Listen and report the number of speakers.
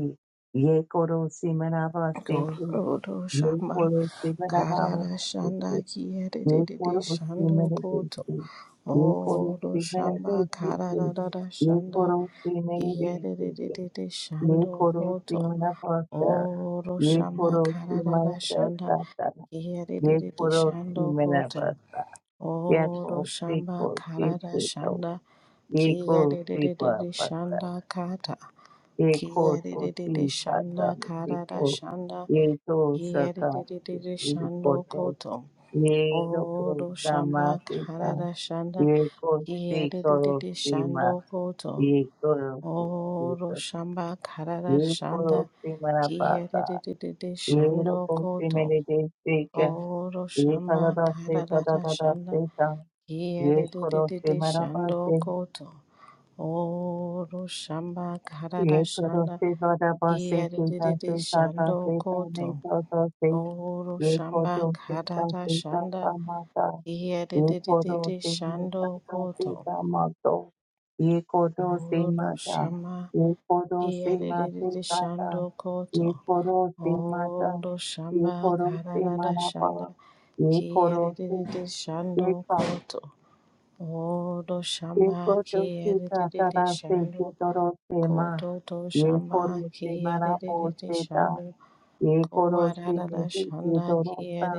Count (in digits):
2